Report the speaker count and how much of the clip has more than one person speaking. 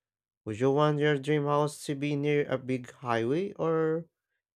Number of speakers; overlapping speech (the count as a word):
one, no overlap